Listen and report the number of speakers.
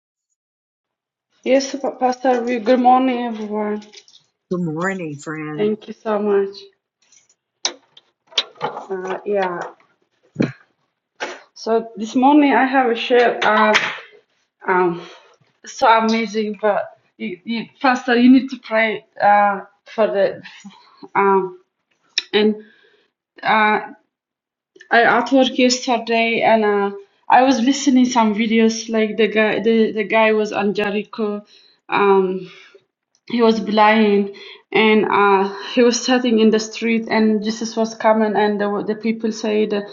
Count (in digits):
2